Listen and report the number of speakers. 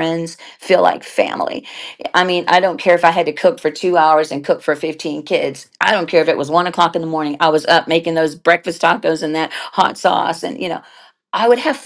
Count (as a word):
one